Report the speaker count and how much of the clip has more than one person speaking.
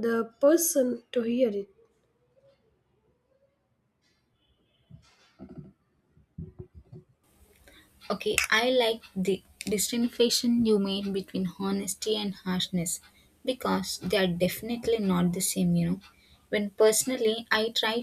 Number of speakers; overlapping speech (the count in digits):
2, no overlap